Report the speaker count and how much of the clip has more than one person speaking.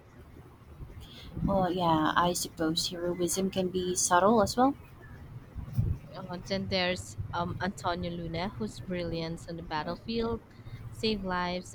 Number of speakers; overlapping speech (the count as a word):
two, no overlap